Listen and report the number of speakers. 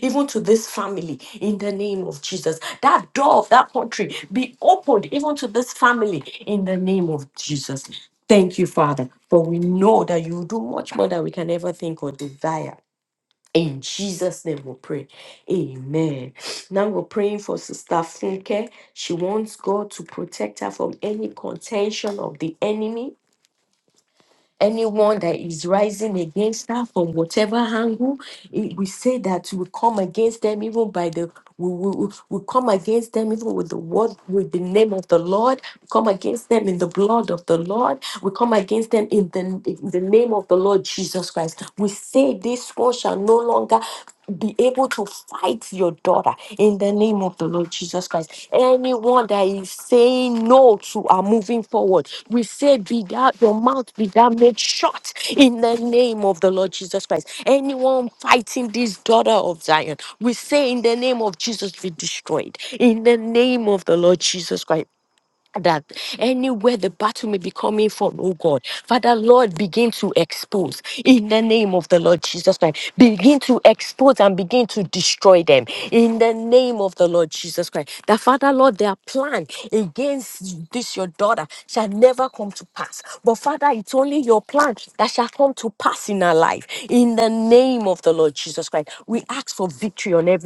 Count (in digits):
1